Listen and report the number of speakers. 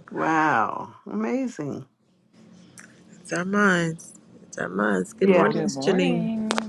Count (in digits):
3